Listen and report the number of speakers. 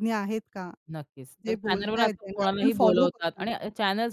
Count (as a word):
two